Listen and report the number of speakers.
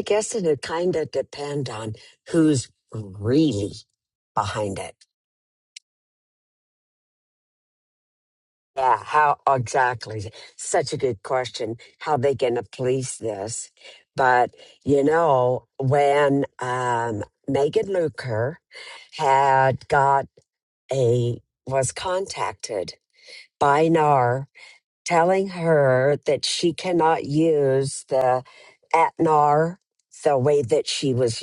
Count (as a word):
one